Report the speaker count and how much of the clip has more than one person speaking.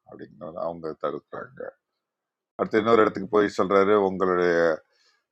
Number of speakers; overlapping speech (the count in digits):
1, no overlap